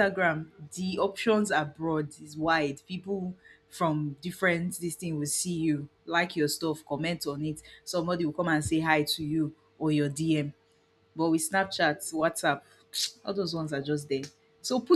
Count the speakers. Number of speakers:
1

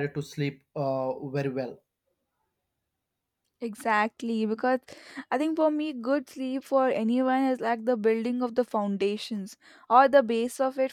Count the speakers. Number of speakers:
2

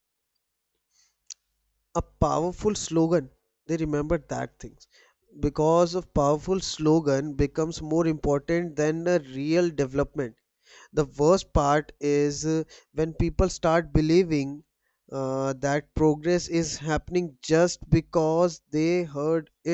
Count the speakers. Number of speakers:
1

